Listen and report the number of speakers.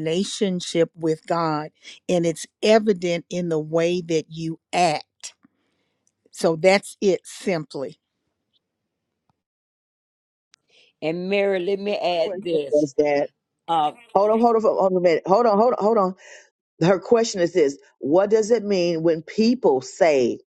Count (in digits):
3